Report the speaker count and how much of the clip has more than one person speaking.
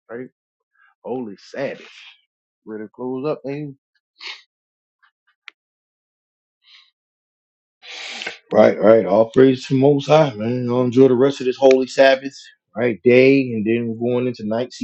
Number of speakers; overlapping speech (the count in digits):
2, no overlap